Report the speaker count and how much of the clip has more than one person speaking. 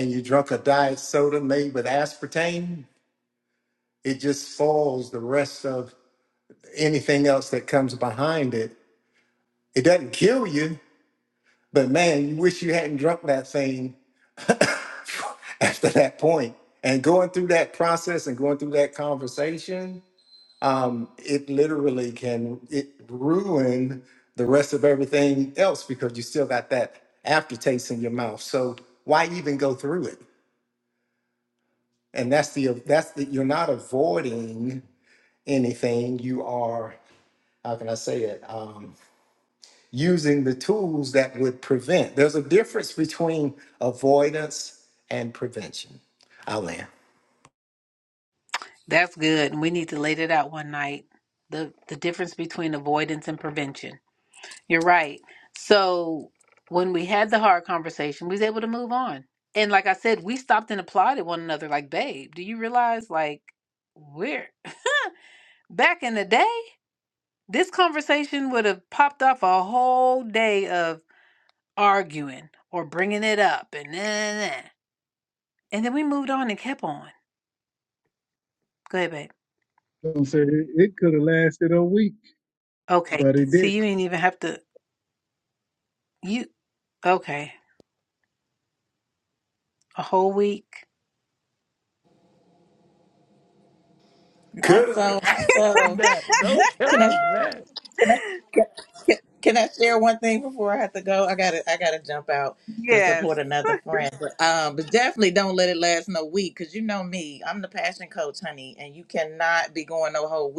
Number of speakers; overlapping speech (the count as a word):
five, about 1%